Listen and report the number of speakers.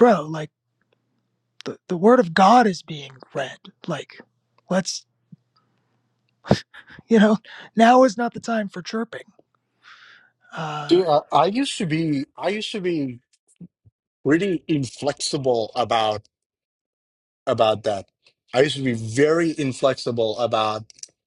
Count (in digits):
2